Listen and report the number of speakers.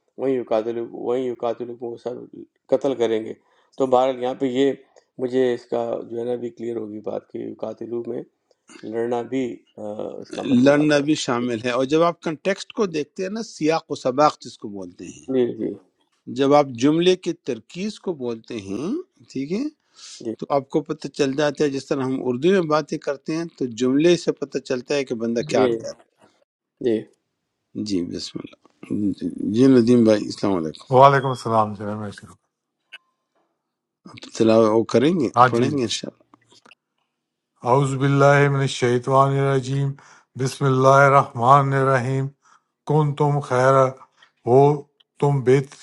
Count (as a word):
three